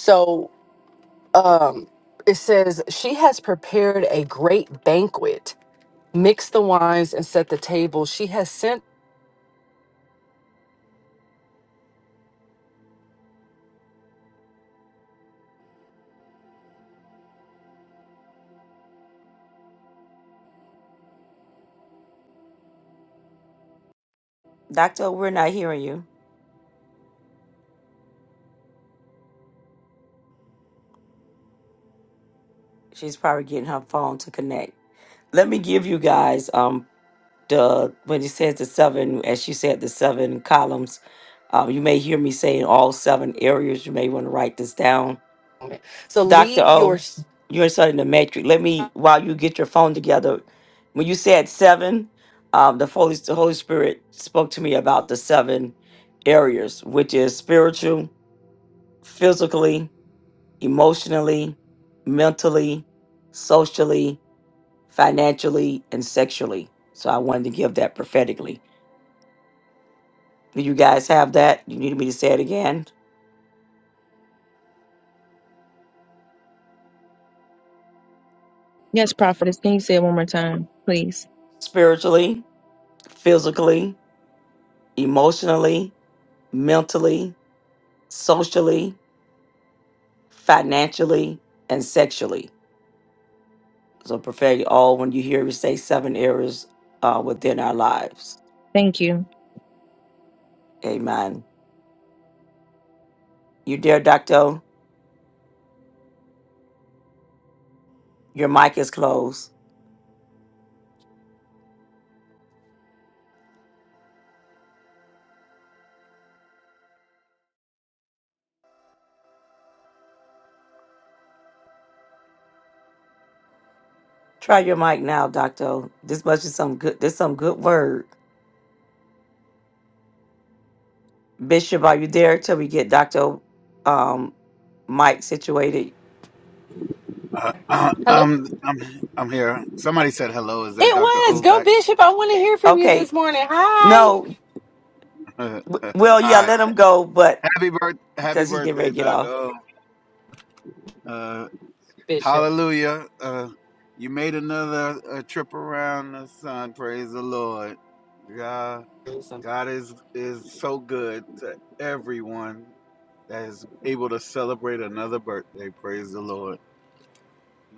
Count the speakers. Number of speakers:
four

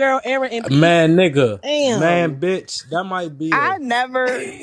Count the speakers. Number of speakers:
three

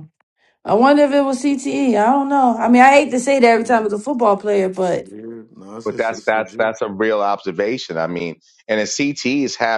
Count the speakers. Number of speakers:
three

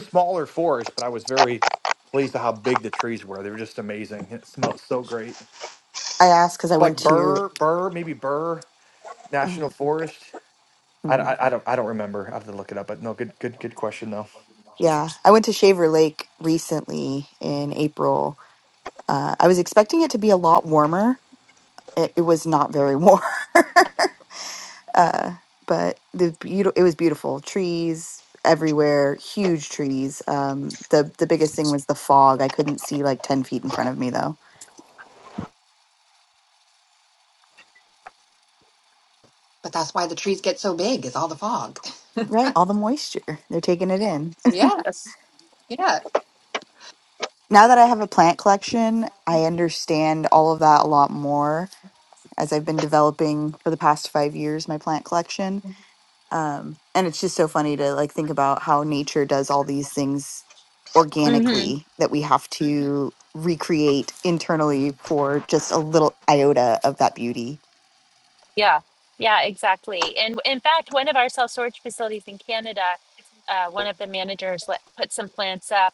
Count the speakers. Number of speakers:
four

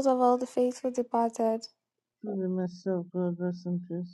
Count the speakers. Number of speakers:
two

